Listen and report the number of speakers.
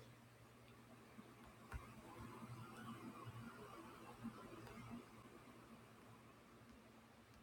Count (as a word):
zero